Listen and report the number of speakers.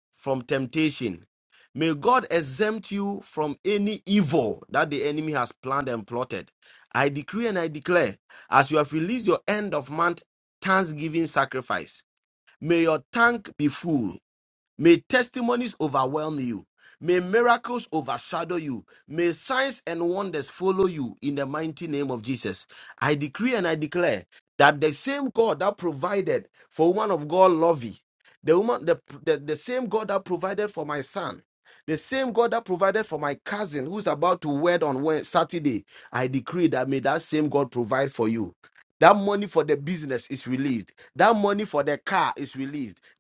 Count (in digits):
1